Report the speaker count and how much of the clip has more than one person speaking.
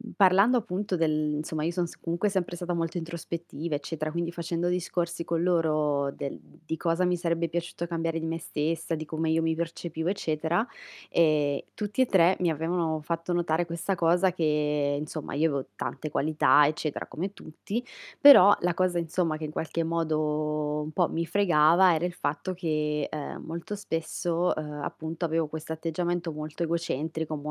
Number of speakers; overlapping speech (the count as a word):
one, no overlap